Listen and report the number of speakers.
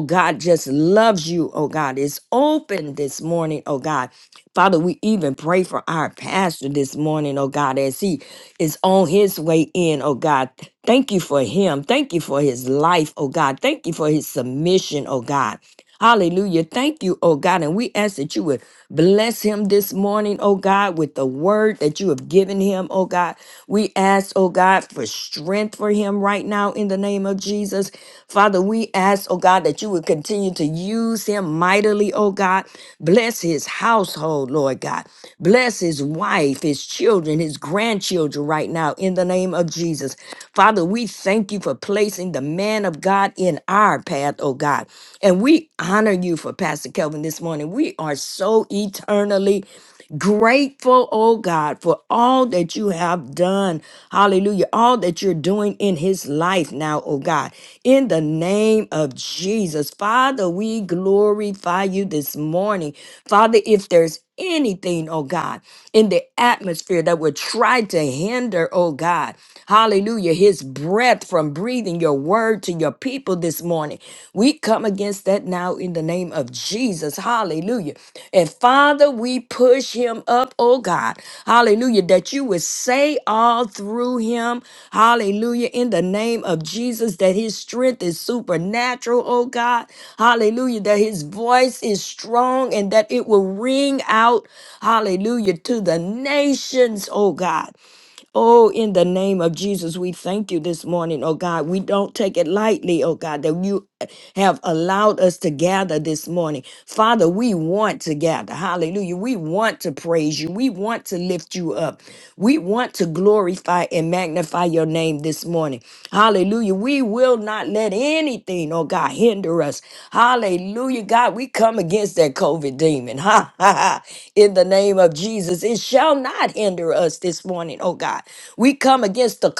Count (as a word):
one